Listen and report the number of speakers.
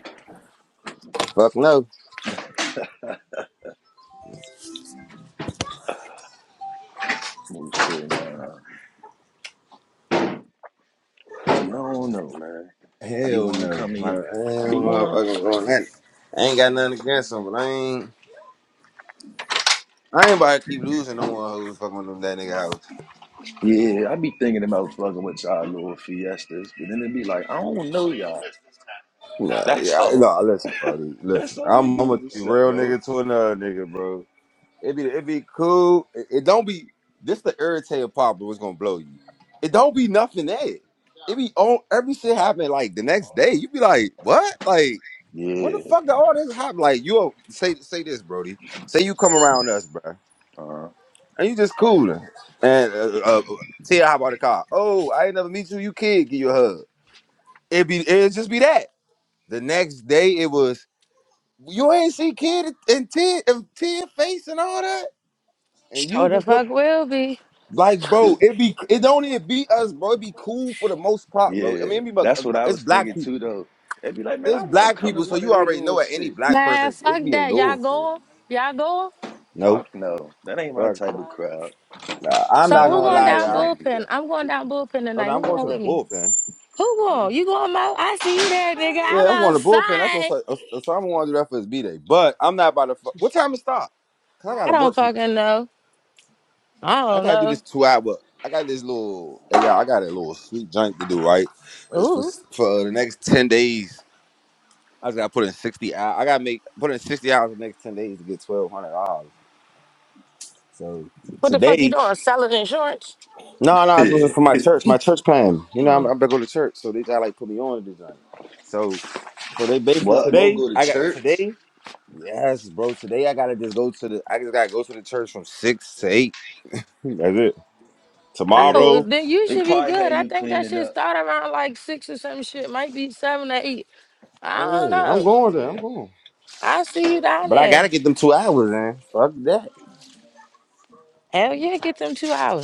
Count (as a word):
three